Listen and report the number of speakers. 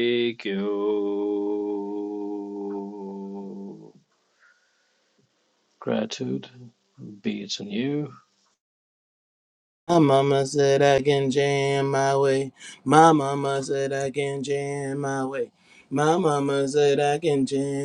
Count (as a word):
two